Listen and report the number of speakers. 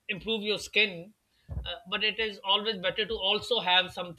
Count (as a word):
one